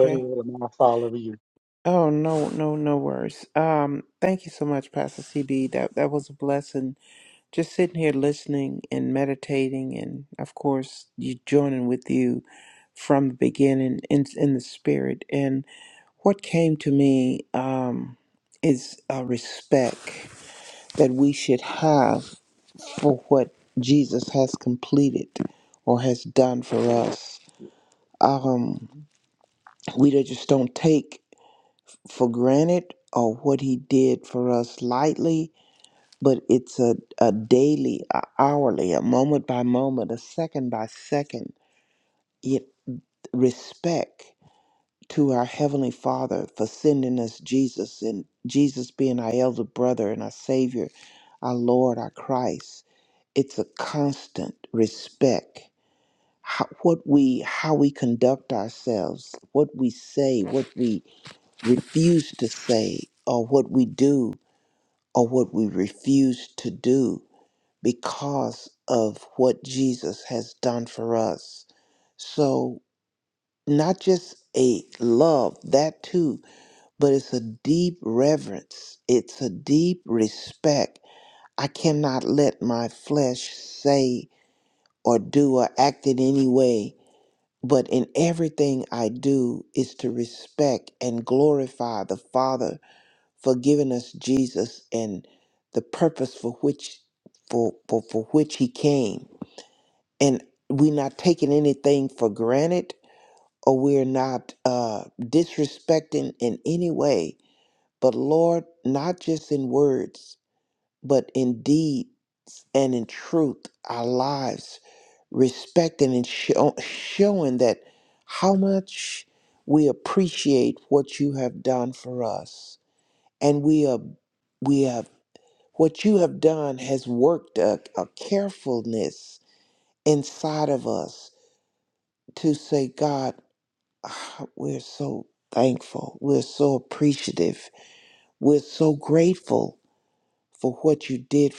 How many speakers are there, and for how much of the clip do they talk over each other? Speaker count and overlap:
2, under 1%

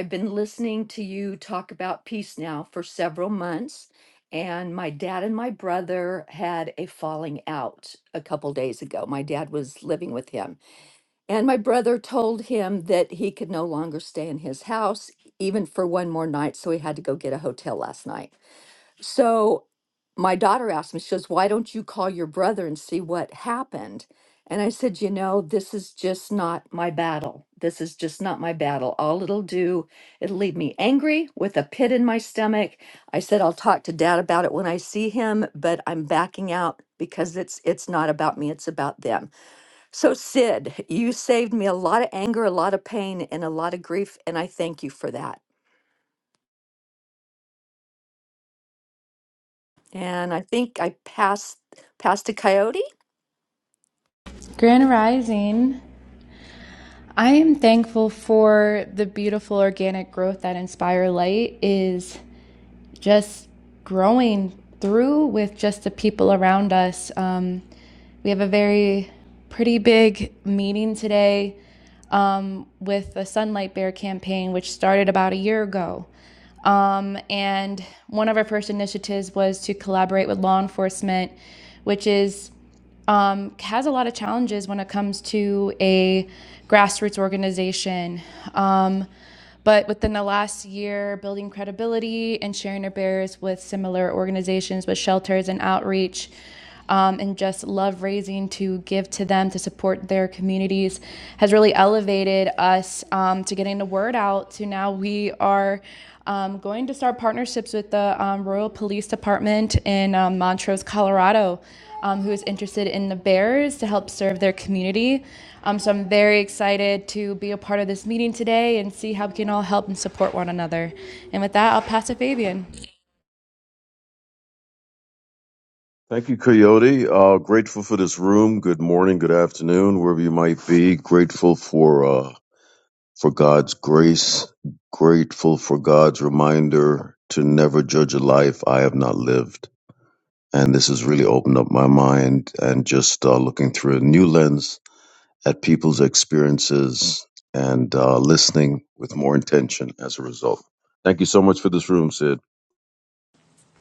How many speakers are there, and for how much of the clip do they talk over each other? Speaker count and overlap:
3, no overlap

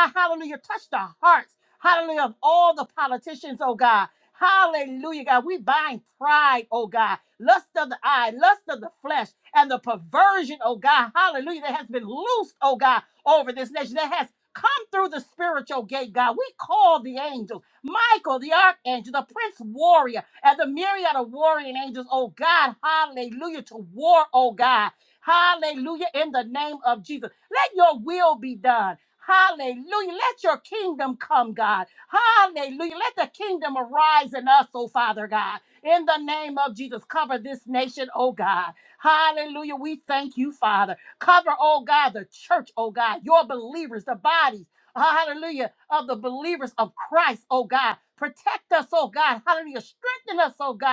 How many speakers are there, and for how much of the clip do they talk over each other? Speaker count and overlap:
1, no overlap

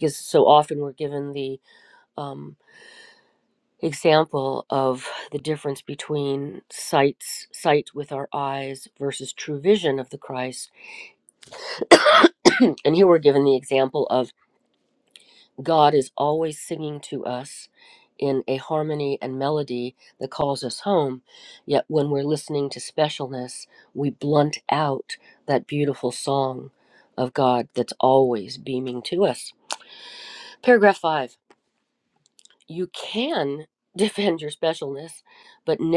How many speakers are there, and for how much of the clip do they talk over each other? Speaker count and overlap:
1, no overlap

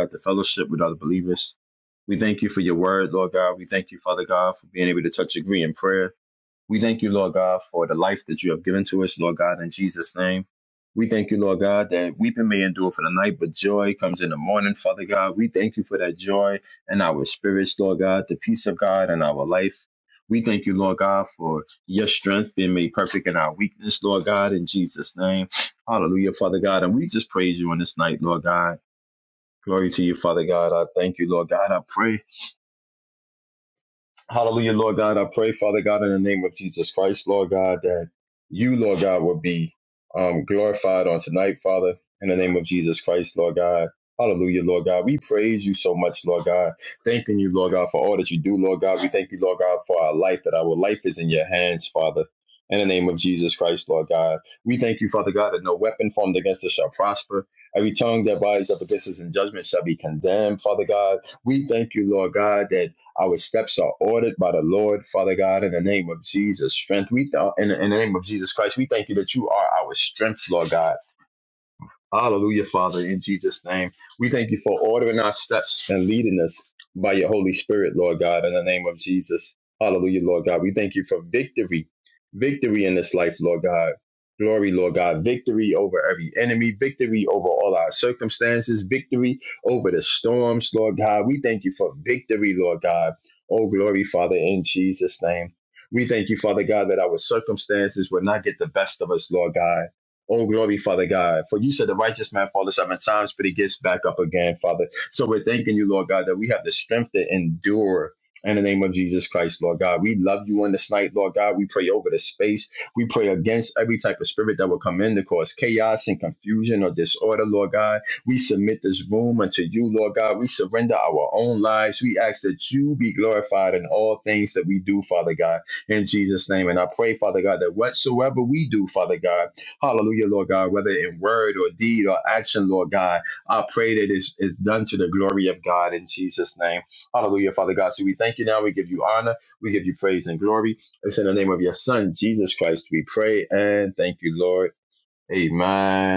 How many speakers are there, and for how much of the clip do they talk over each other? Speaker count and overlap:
1, no overlap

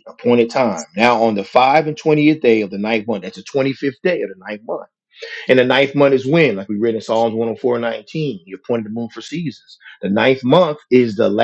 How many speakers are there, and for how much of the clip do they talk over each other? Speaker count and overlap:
1, no overlap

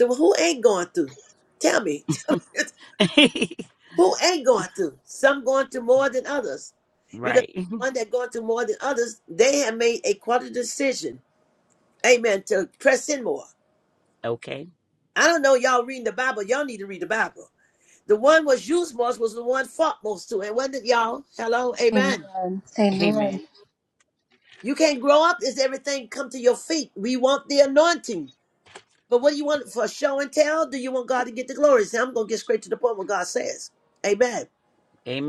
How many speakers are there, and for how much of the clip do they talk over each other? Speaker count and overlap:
3, about 2%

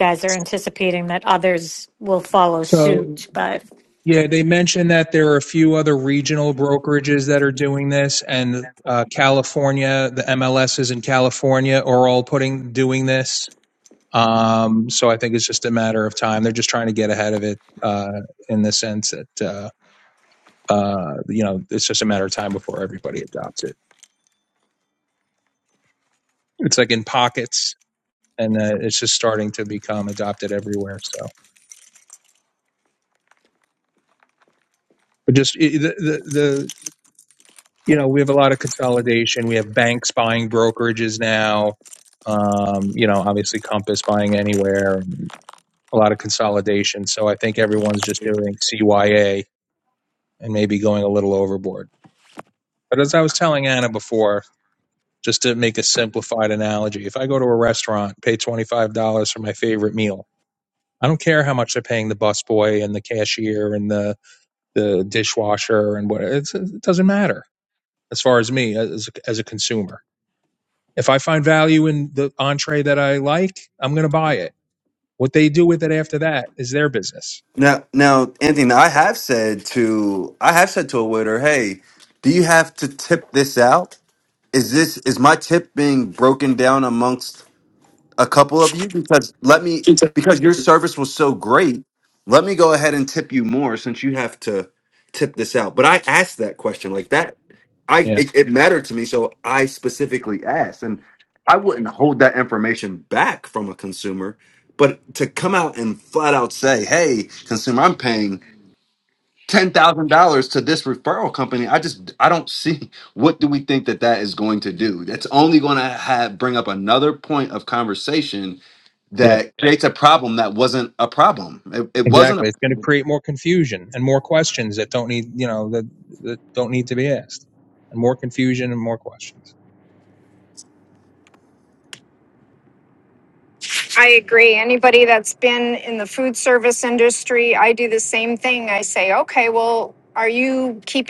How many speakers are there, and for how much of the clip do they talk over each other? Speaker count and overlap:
4, about 1%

